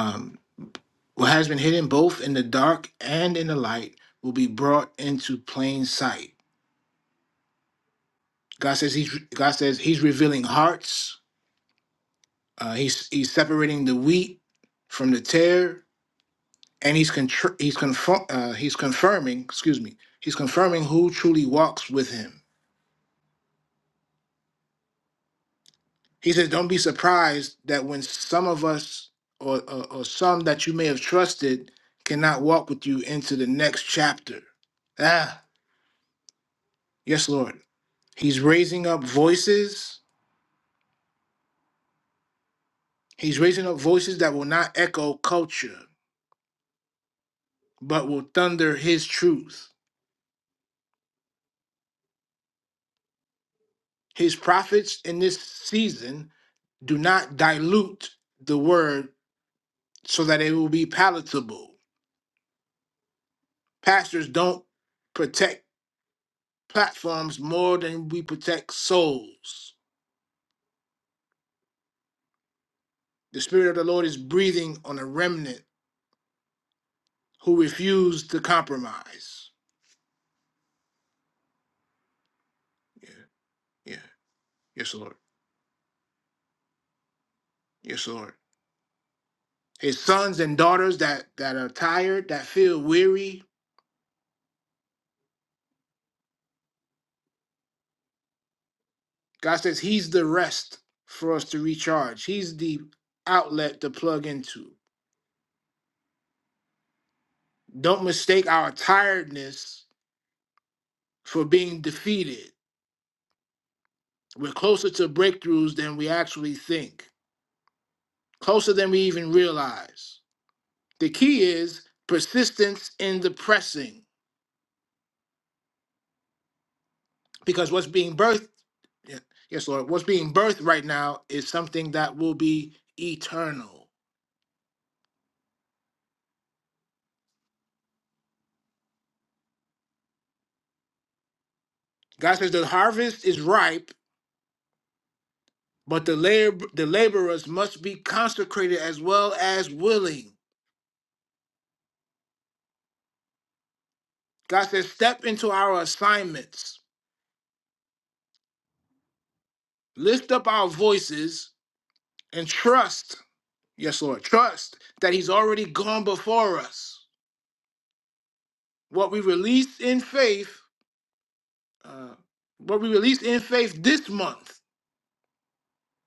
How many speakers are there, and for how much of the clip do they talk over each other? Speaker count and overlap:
one, no overlap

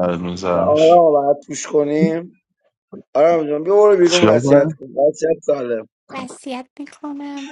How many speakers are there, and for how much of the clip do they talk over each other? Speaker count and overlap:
three, about 14%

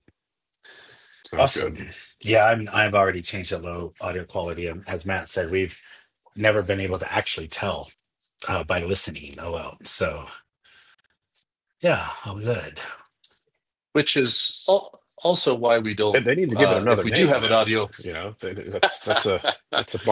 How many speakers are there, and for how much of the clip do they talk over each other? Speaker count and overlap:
three, about 11%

